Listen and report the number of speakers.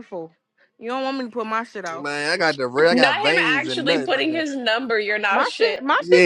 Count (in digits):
3